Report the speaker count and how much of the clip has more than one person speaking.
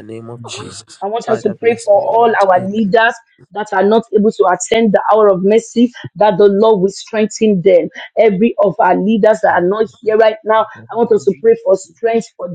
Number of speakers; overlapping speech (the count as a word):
two, about 14%